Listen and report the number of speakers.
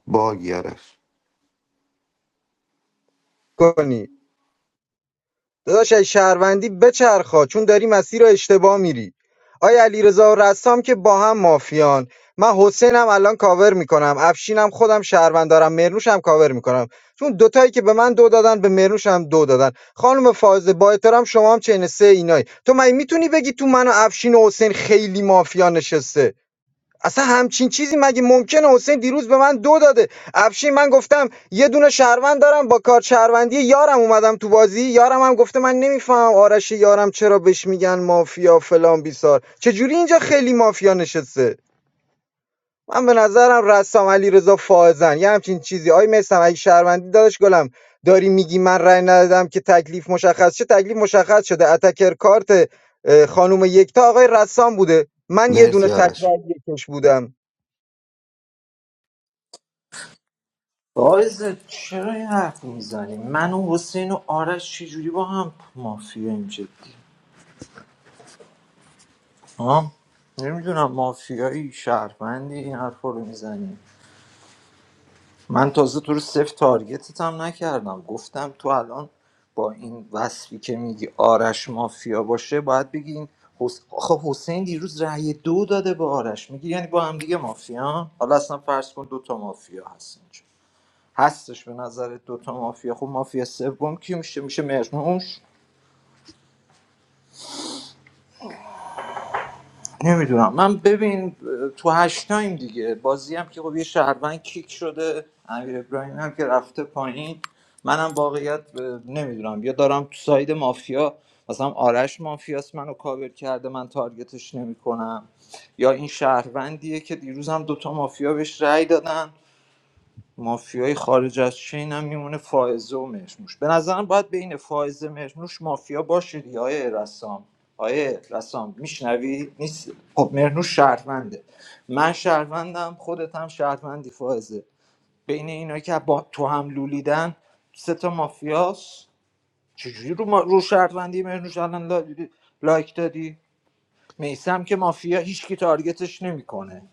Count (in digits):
3